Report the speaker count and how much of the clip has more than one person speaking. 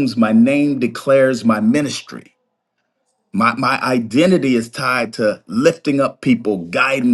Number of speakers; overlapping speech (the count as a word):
one, no overlap